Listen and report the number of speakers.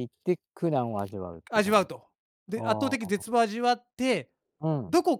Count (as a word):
two